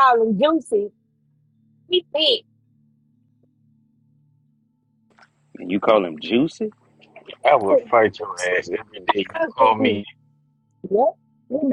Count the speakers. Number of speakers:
3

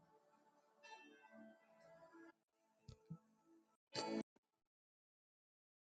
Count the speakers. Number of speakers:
0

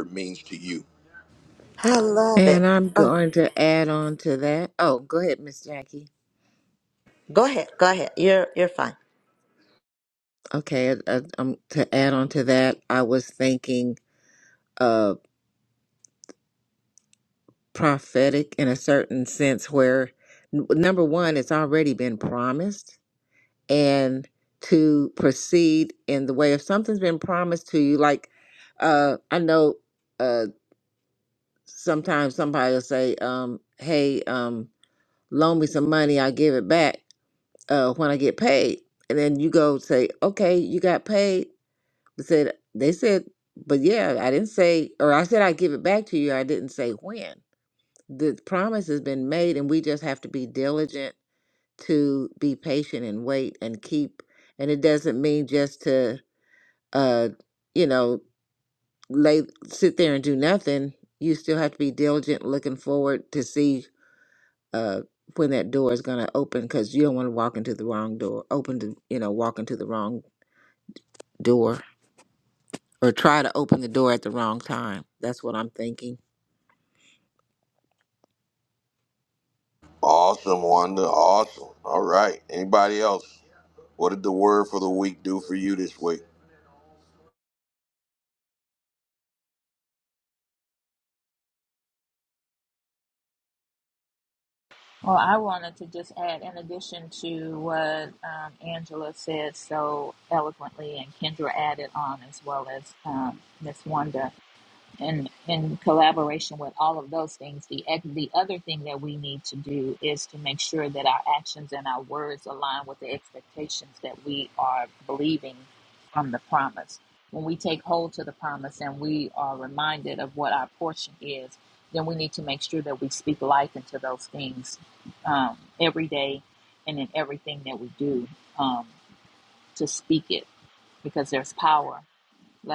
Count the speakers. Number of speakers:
4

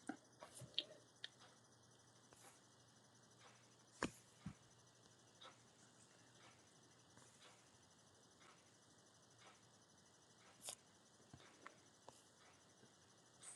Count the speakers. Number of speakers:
0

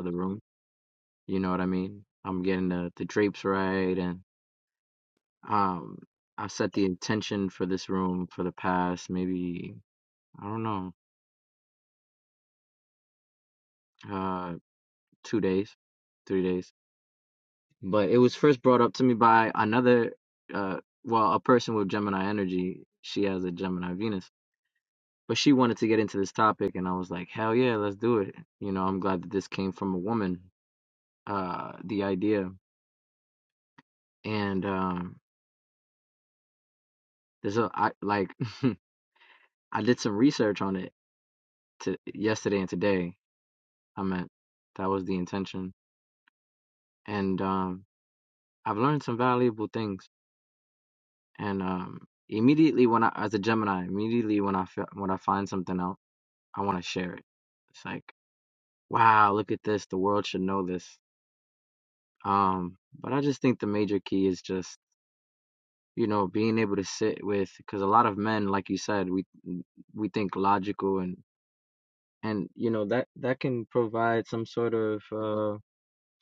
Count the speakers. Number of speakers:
1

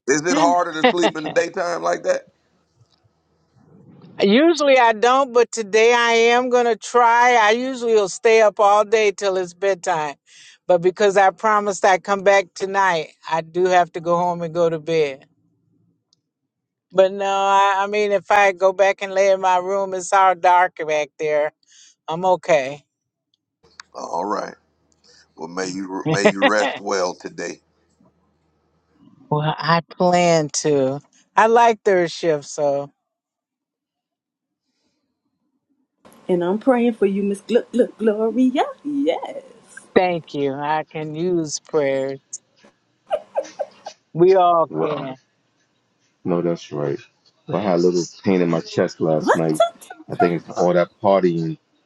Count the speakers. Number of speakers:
4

